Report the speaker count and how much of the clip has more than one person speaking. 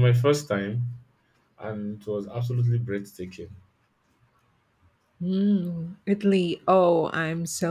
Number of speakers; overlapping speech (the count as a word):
two, no overlap